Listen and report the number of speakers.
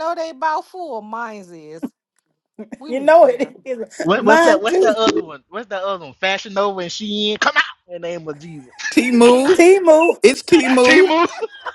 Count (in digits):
4